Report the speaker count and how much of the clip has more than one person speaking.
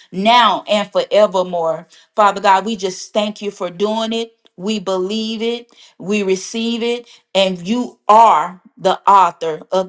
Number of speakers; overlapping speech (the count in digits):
1, no overlap